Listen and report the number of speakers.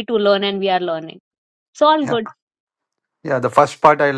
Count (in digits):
2